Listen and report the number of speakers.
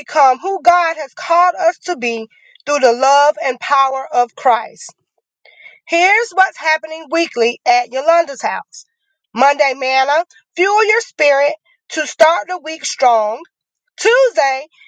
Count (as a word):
one